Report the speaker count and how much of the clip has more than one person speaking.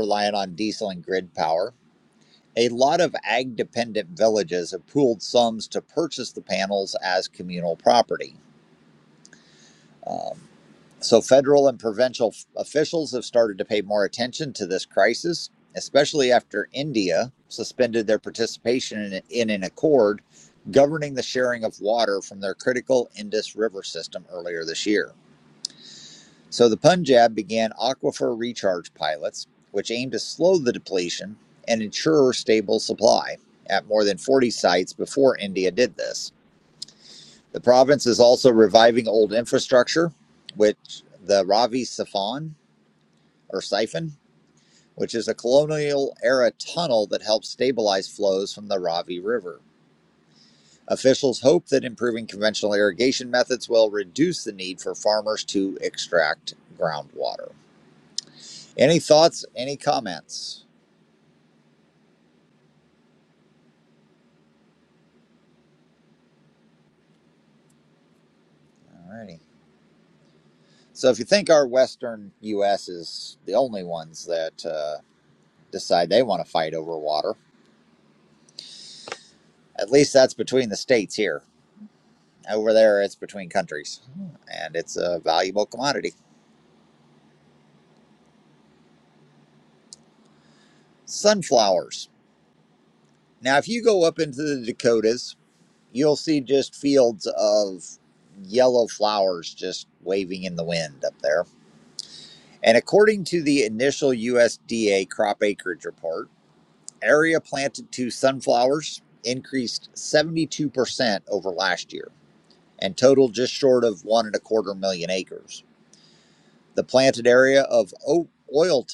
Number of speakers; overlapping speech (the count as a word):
one, no overlap